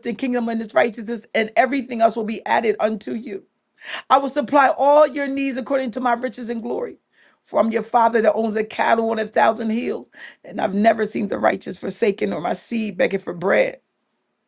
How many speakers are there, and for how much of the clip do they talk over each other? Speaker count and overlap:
1, no overlap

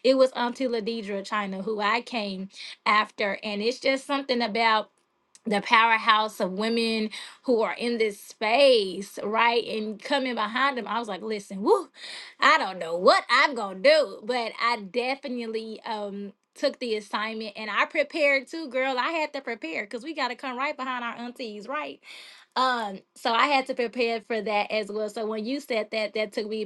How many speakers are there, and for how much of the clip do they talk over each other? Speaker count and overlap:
1, no overlap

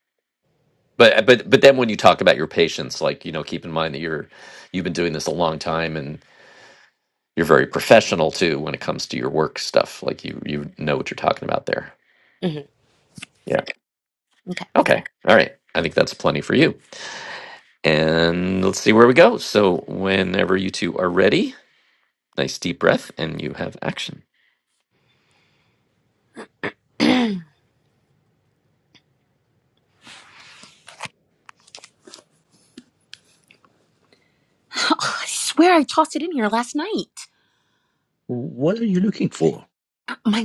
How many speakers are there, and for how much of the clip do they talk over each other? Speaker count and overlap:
3, no overlap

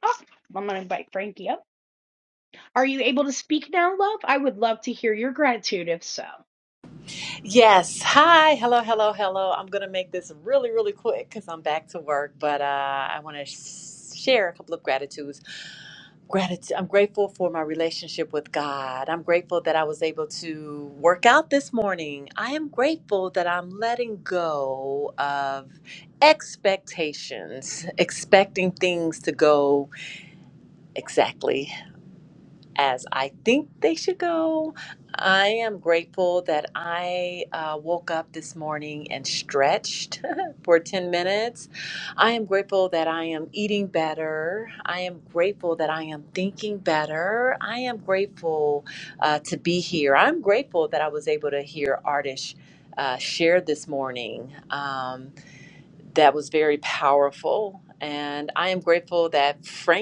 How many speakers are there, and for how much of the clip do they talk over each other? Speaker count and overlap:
2, no overlap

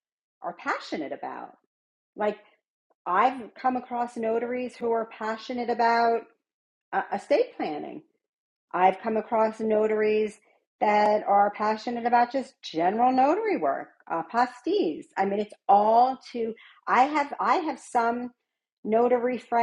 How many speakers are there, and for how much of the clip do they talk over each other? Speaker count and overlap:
1, no overlap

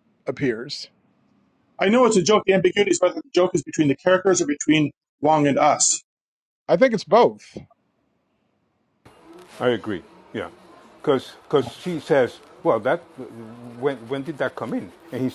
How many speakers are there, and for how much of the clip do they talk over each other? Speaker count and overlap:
3, no overlap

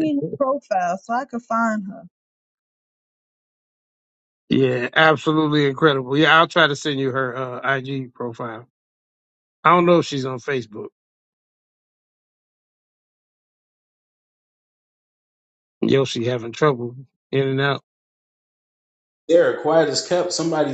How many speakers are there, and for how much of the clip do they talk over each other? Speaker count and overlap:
3, no overlap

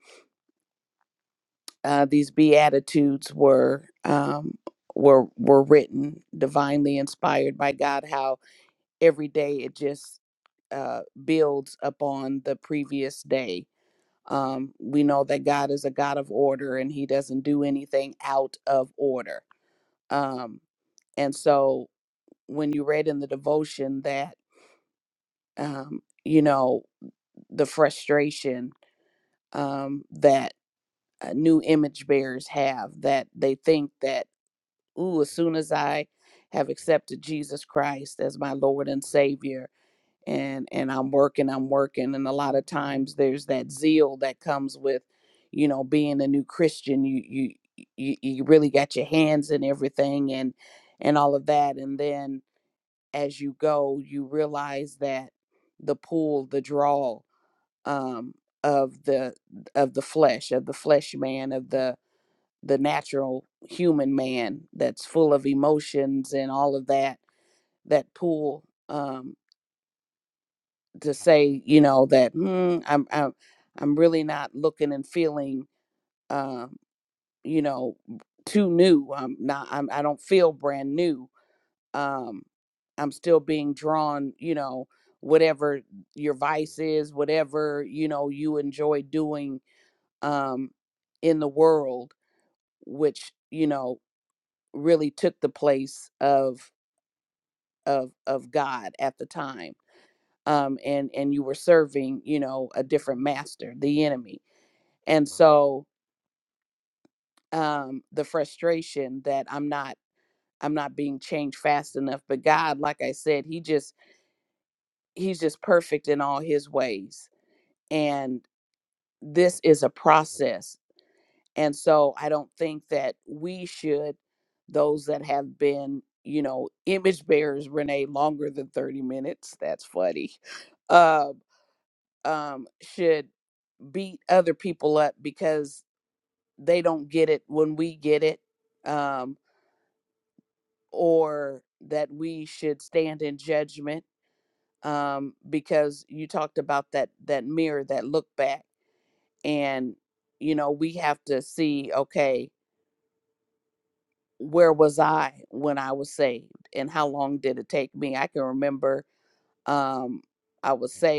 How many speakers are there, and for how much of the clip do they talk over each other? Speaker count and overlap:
1, no overlap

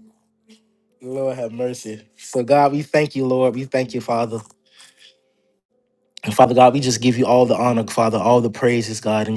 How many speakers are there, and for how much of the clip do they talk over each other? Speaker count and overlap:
1, no overlap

